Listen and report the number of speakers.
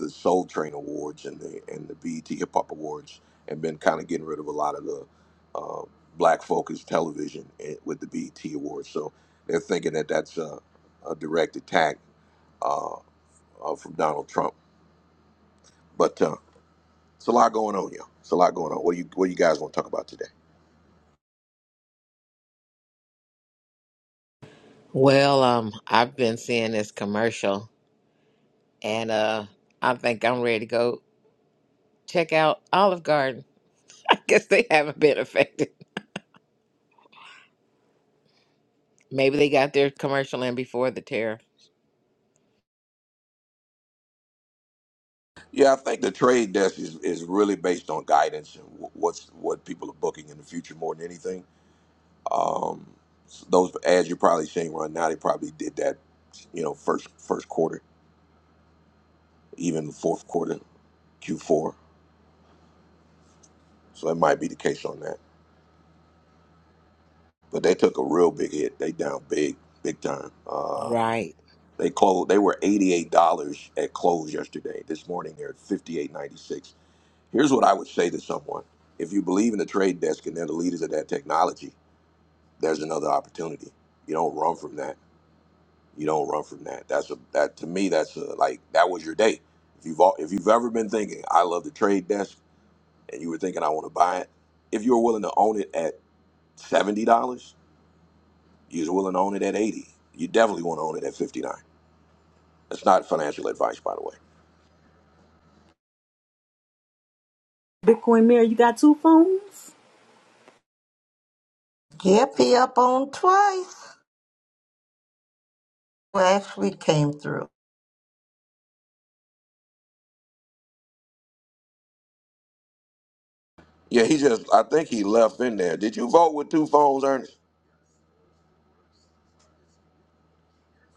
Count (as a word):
four